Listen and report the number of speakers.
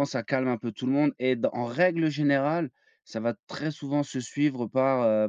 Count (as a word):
one